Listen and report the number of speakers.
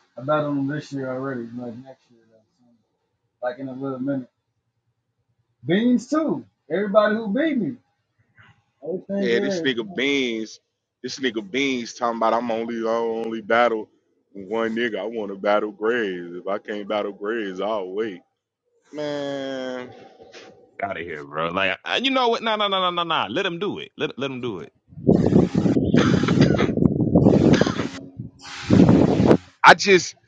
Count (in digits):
3